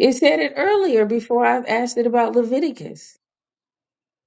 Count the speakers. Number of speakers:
1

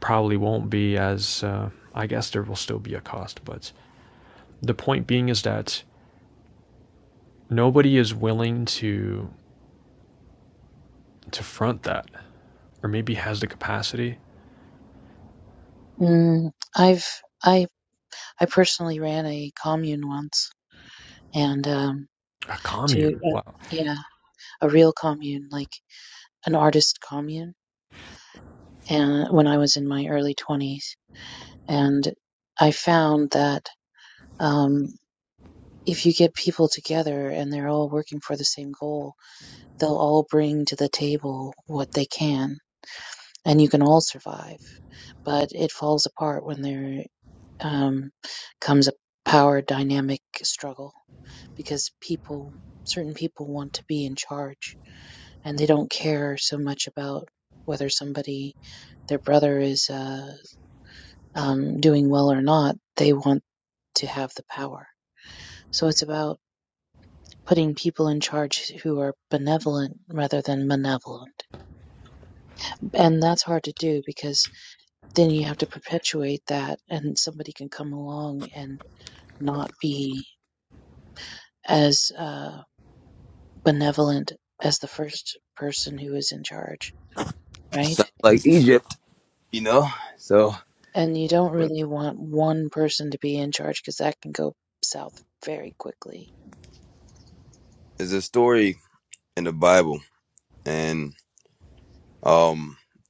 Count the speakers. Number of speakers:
3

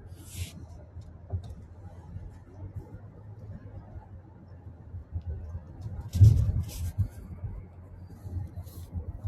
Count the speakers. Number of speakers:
0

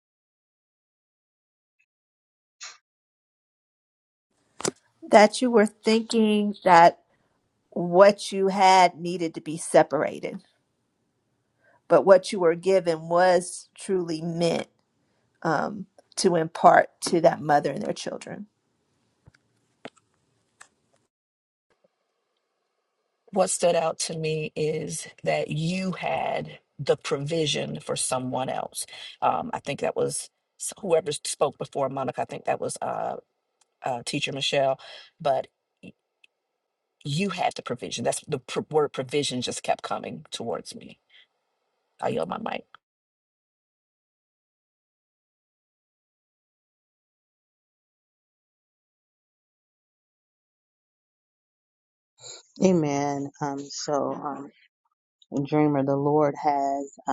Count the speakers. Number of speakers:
3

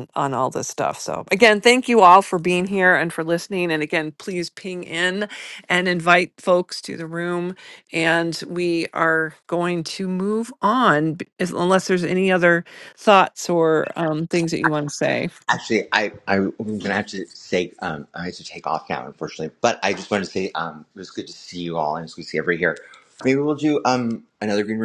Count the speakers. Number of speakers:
2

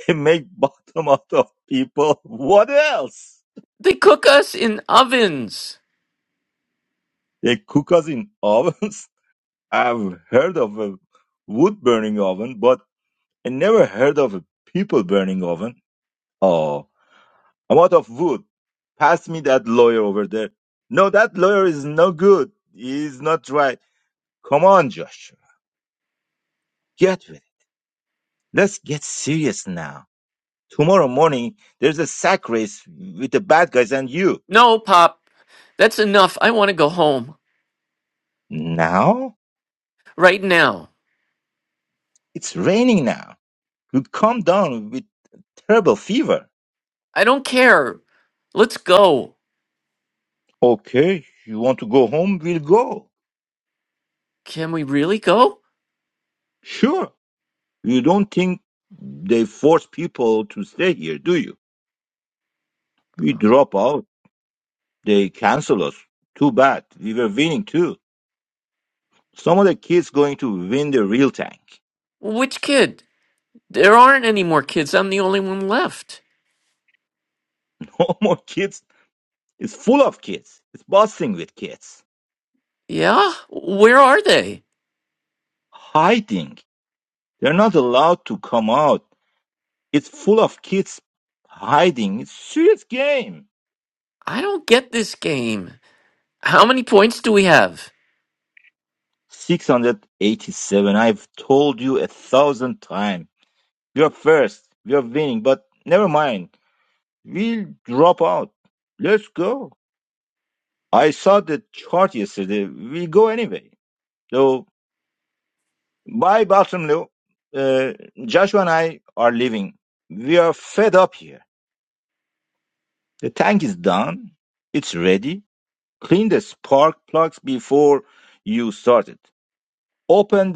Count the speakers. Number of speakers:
2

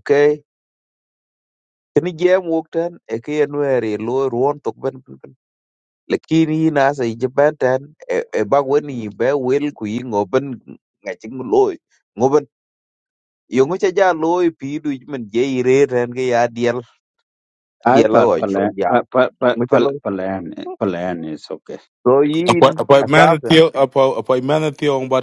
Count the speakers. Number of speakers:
3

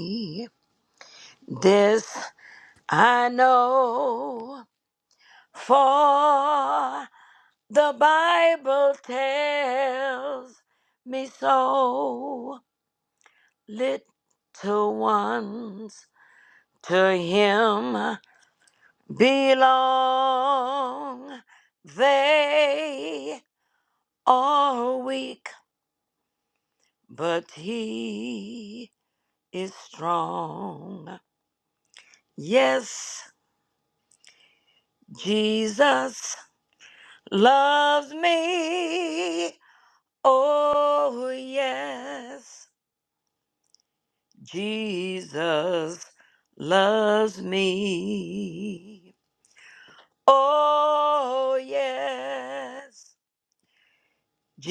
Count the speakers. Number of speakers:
1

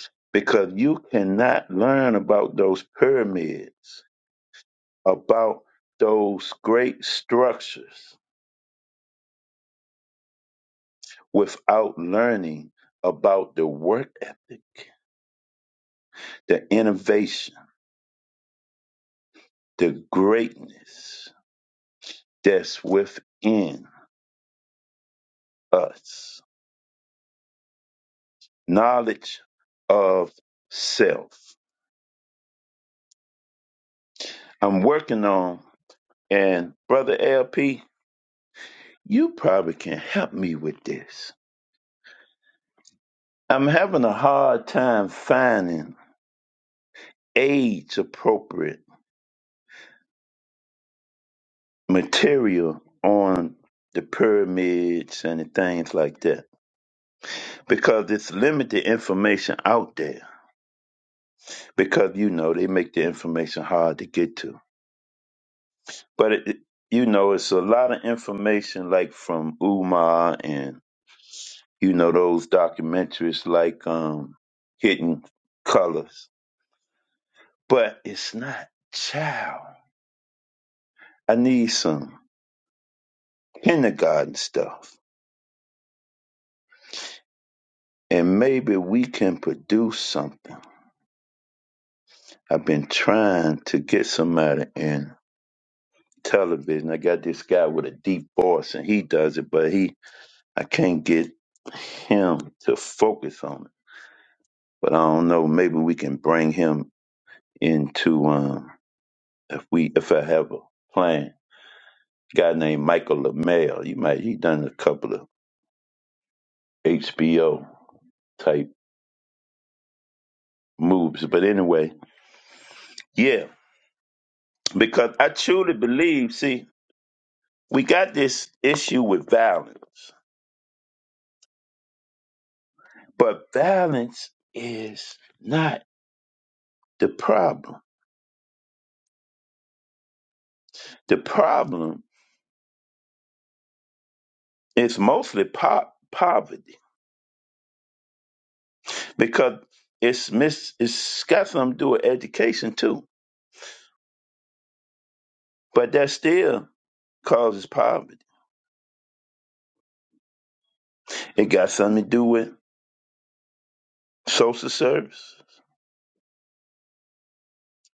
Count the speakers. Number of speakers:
1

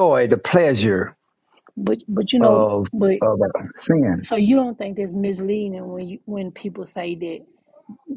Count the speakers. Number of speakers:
2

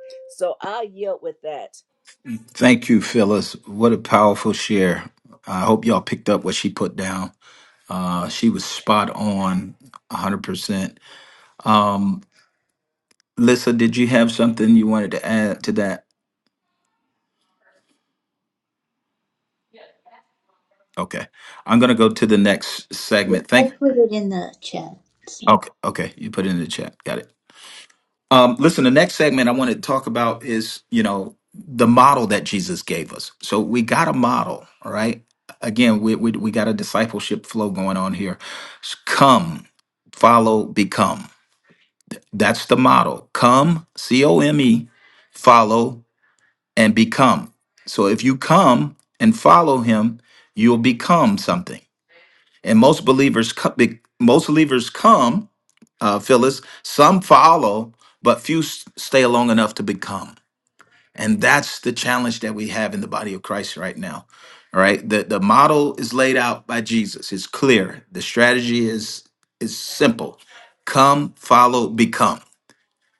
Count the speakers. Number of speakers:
3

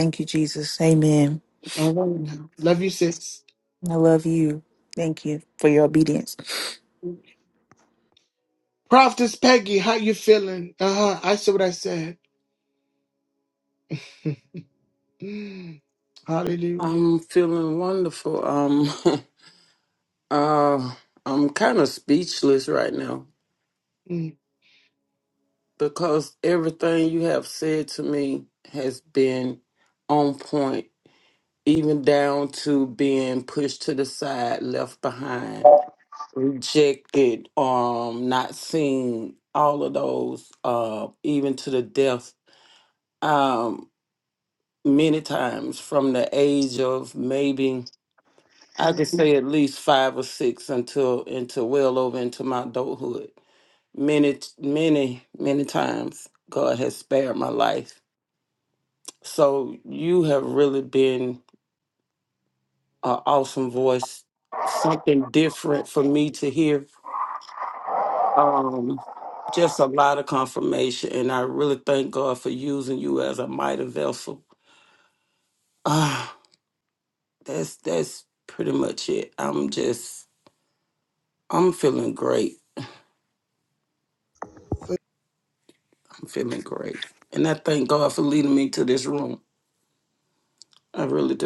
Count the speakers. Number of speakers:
3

